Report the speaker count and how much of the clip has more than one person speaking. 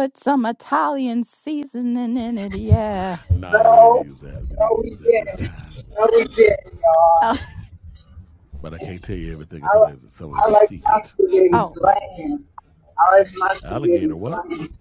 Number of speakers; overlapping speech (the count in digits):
3, about 29%